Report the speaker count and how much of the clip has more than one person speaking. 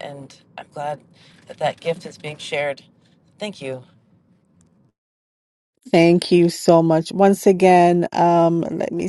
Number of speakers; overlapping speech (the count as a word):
two, no overlap